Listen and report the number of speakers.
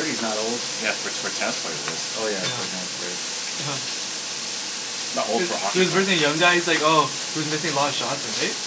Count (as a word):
three